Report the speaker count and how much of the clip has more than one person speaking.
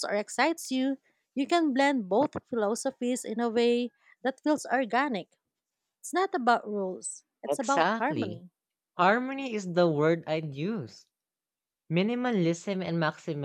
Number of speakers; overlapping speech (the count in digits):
2, about 7%